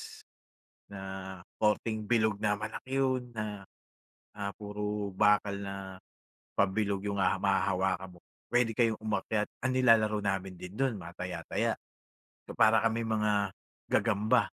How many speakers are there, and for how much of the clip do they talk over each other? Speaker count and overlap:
one, no overlap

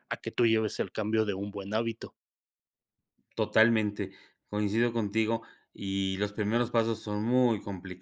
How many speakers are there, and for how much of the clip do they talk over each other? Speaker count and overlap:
two, no overlap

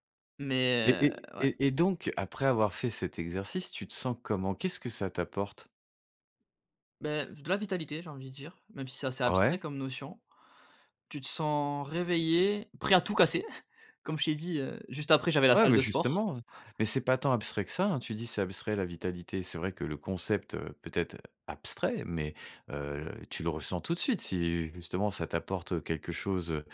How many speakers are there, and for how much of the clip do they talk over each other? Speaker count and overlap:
two, about 6%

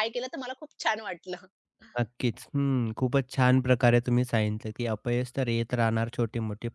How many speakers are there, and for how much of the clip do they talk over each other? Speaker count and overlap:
two, no overlap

